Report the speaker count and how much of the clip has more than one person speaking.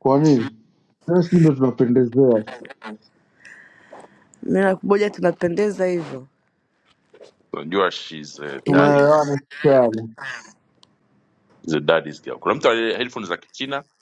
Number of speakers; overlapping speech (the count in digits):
3, about 4%